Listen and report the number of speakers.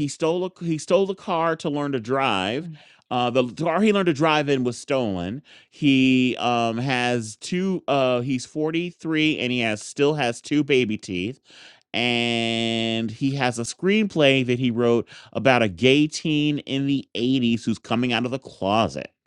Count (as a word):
one